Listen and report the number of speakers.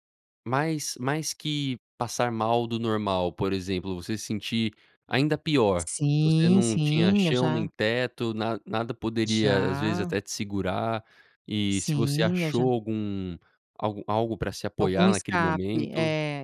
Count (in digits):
2